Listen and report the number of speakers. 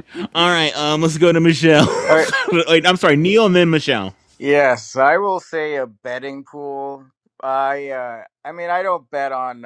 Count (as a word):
two